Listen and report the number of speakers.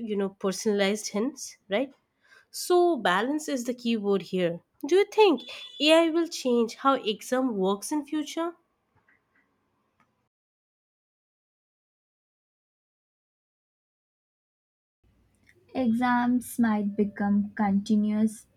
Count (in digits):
2